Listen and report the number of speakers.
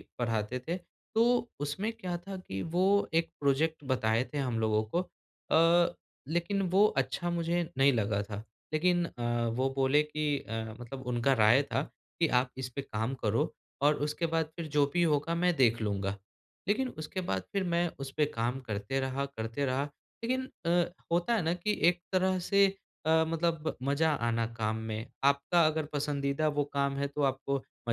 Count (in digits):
1